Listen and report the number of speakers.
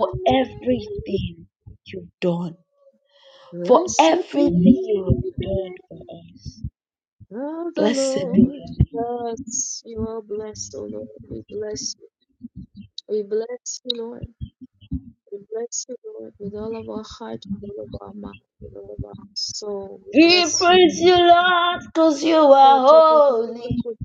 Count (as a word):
two